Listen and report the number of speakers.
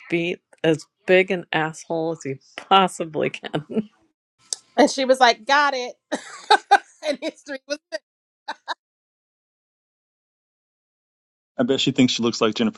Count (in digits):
3